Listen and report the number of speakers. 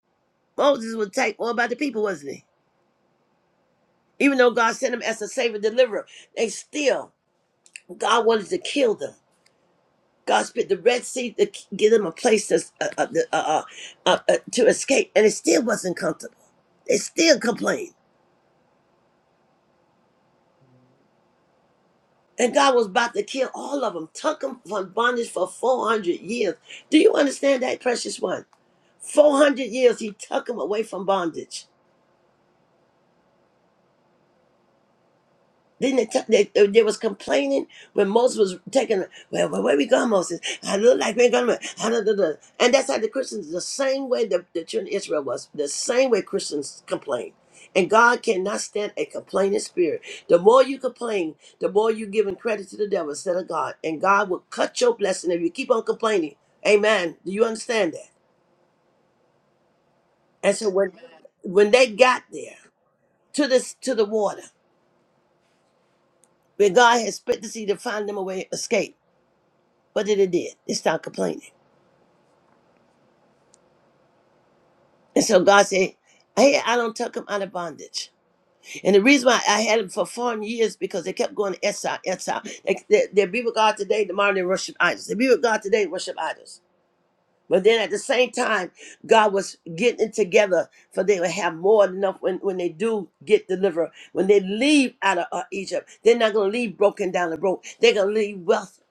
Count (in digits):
1